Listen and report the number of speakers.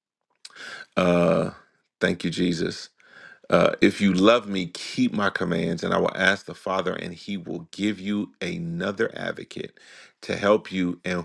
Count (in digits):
1